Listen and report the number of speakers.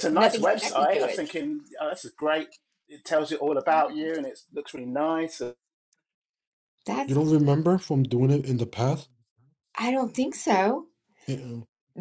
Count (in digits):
3